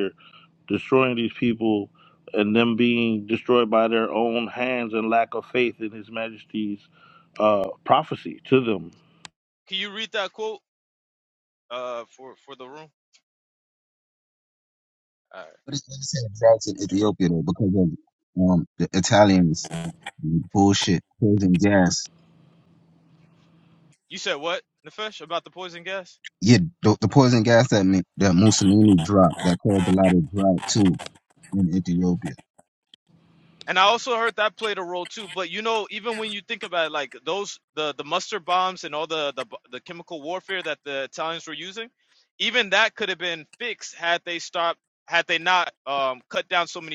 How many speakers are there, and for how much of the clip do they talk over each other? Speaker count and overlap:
3, no overlap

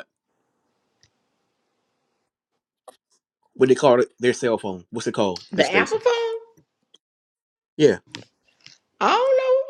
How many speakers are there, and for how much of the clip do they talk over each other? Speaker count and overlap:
2, about 5%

